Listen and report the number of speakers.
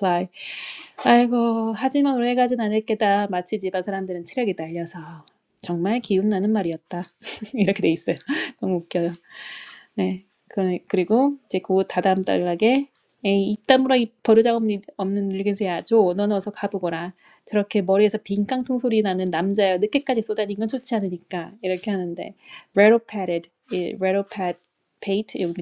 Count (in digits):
1